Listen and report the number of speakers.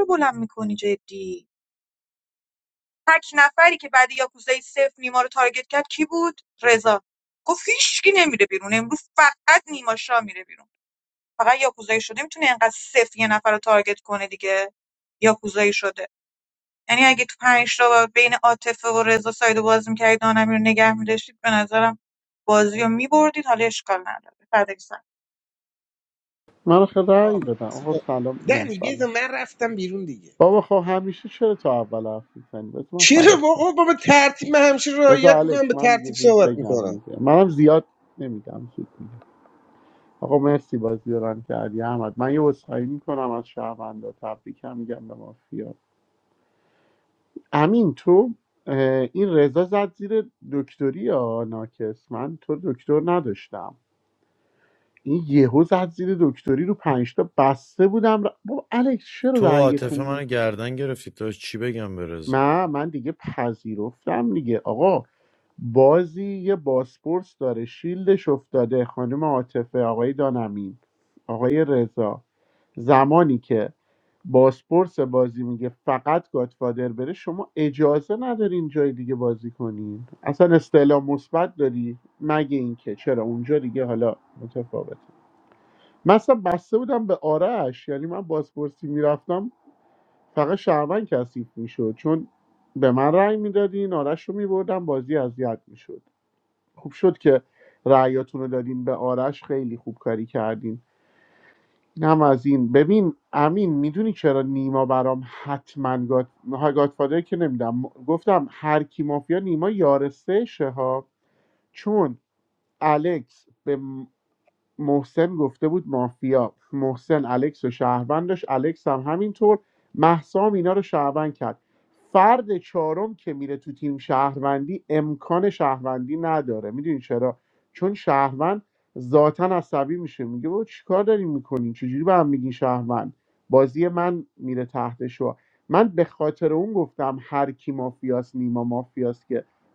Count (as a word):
four